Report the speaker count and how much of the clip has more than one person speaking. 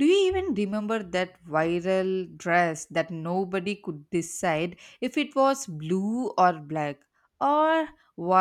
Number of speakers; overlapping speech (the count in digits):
1, no overlap